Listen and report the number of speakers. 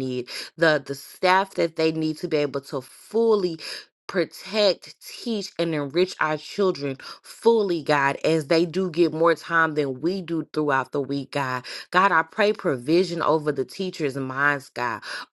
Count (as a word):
one